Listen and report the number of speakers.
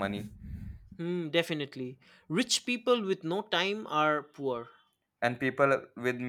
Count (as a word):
two